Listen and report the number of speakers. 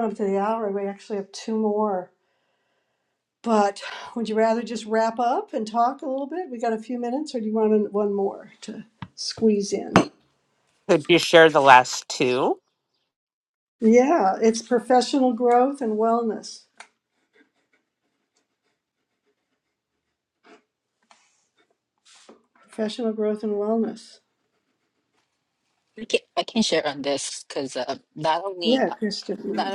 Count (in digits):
3